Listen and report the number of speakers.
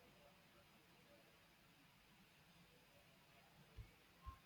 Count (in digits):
0